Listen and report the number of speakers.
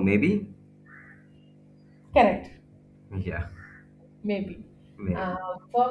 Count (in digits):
2